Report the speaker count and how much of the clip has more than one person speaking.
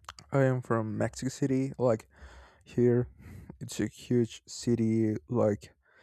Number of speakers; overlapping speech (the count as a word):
one, no overlap